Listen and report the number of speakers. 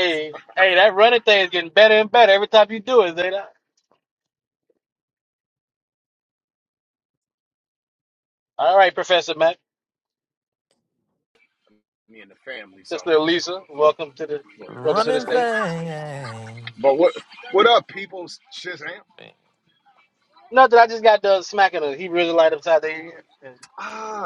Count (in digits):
3